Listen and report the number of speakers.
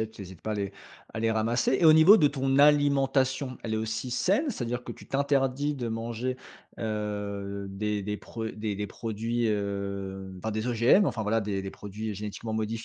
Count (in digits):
1